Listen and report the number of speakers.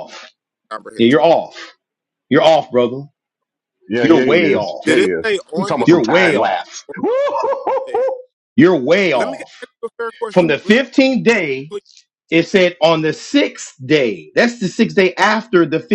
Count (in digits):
3